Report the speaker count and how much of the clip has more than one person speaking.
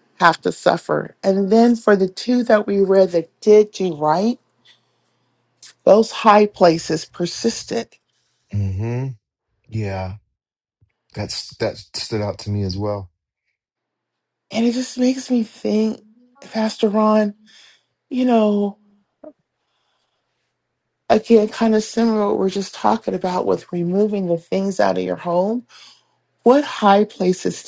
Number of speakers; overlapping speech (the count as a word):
two, no overlap